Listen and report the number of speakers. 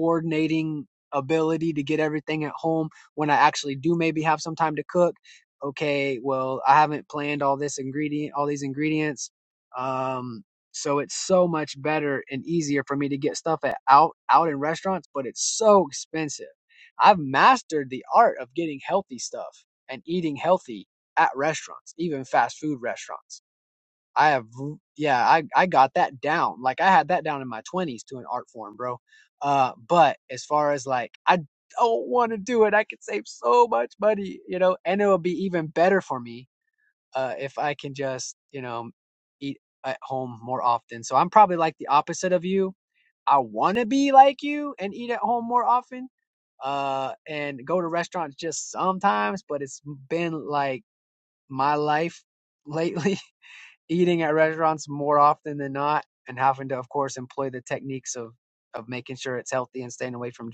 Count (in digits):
1